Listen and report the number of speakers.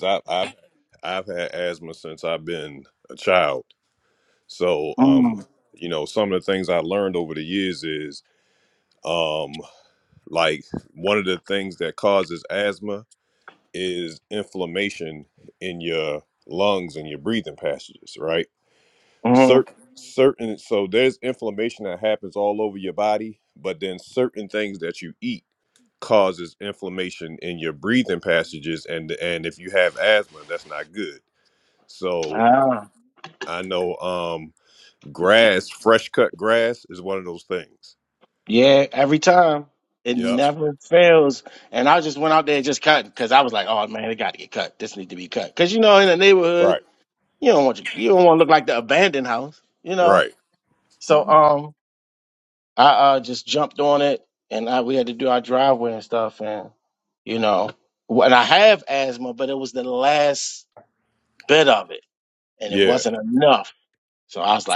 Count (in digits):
2